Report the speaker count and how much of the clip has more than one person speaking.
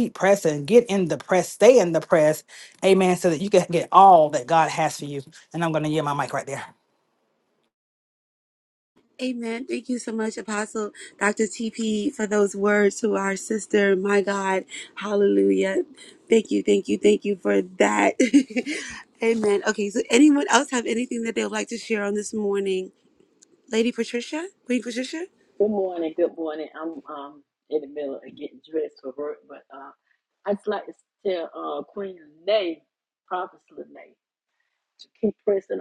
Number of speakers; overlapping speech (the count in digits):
3, no overlap